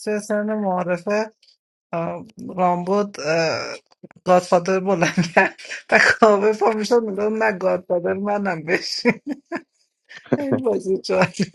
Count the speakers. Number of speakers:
1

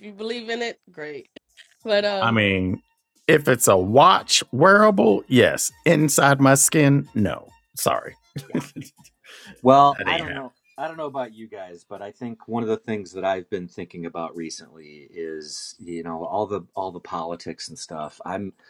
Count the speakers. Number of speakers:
3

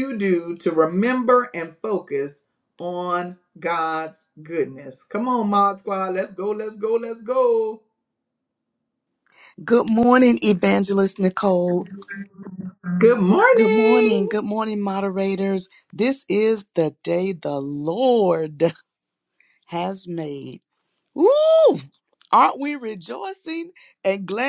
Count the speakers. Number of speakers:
2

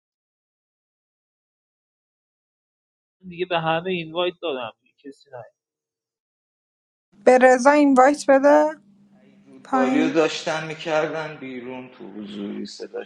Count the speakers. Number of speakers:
3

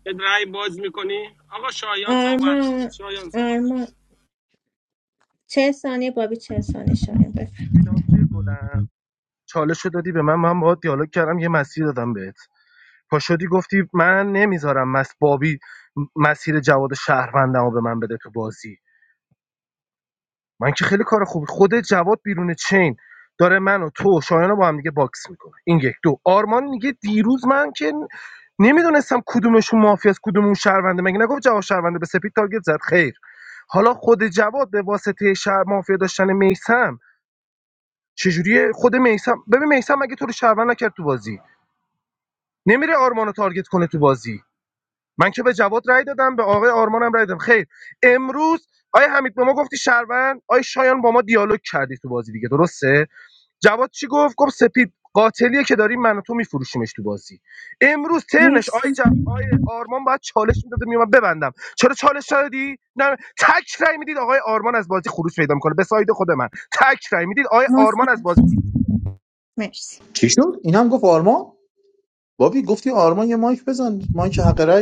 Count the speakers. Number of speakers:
4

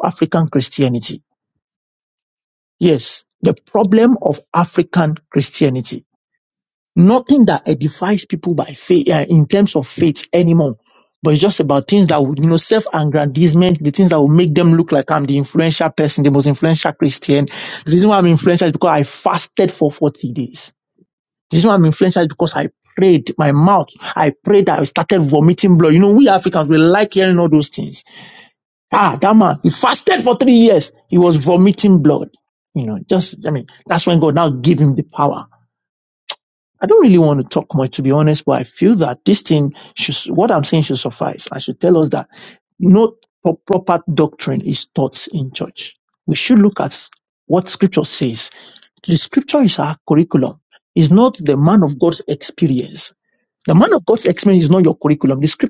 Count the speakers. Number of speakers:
1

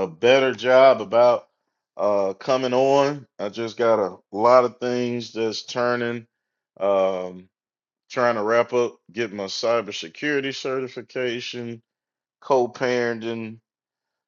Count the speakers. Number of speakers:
1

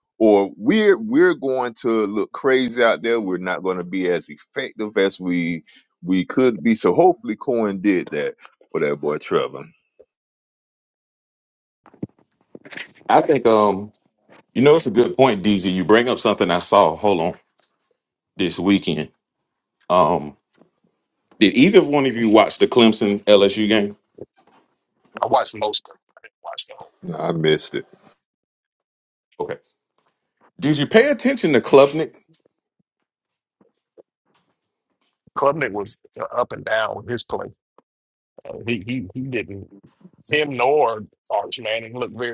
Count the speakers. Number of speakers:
3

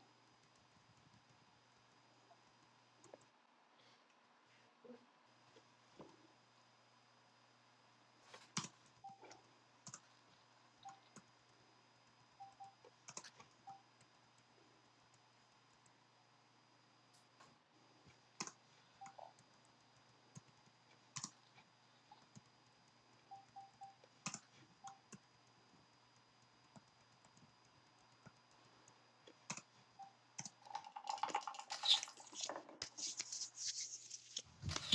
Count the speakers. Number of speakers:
0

